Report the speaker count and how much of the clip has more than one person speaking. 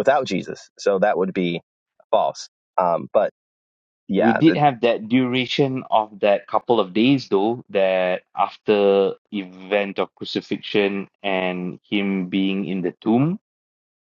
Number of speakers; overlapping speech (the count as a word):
two, about 3%